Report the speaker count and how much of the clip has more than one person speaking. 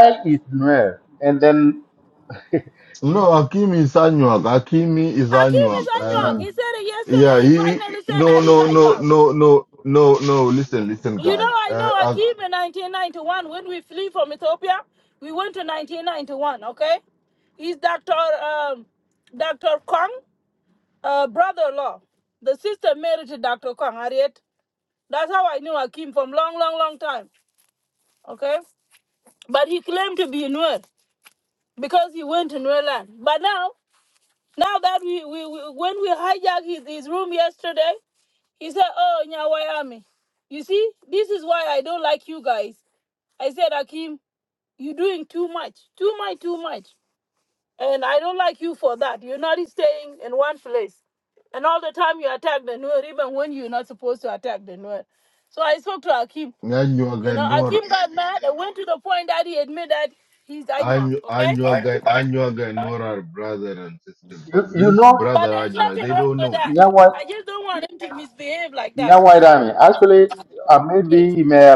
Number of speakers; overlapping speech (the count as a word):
three, about 12%